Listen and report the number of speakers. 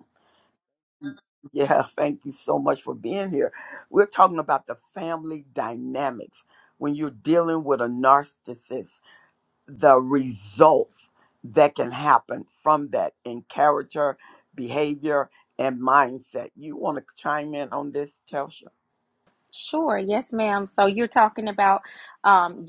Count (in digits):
2